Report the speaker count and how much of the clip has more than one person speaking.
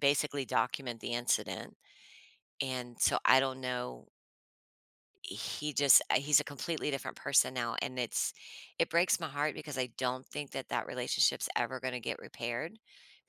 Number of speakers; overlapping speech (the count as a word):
one, no overlap